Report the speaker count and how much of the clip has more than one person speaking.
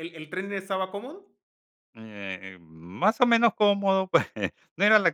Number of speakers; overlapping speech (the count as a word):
two, no overlap